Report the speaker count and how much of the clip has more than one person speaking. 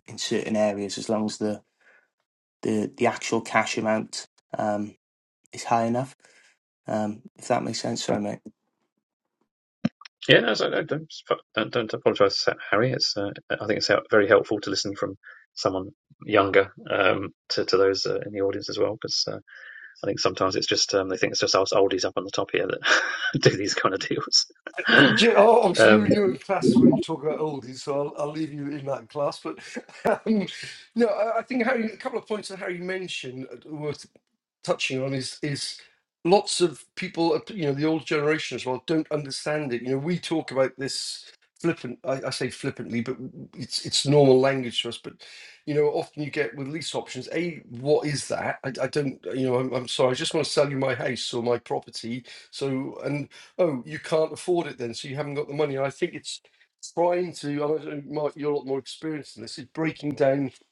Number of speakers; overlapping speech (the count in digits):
3, about 1%